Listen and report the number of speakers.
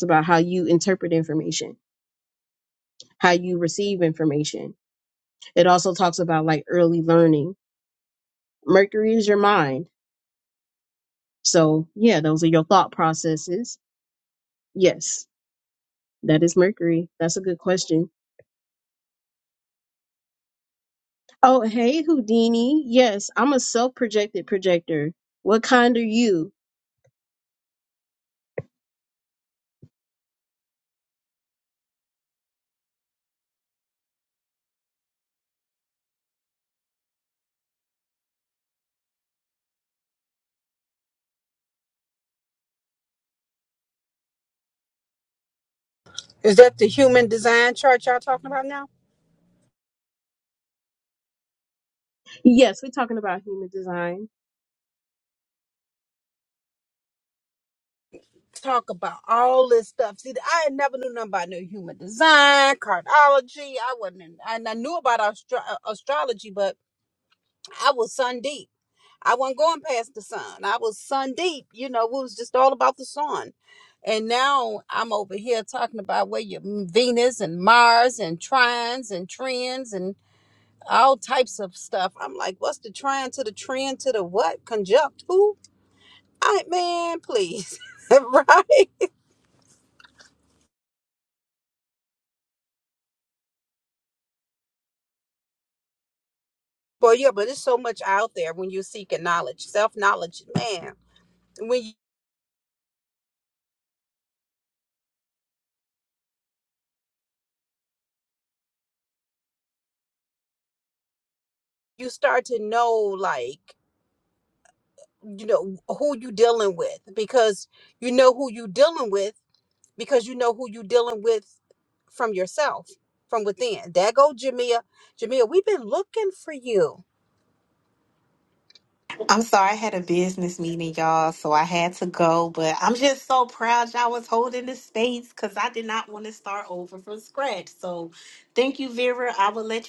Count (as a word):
three